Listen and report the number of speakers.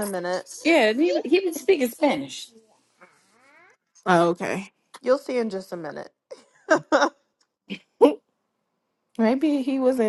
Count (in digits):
3